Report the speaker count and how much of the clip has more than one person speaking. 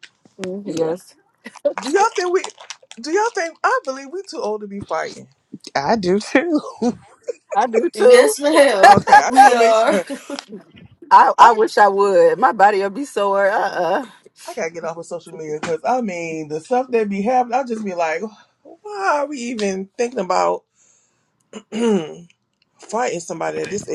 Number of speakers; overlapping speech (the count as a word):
four, about 9%